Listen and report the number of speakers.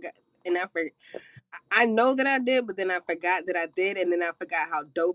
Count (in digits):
1